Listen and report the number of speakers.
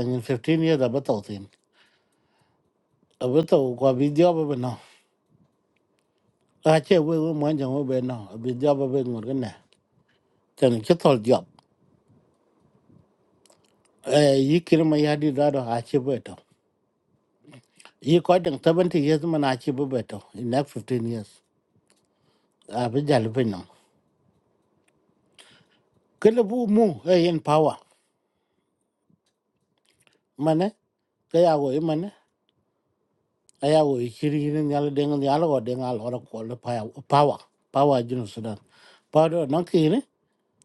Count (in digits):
1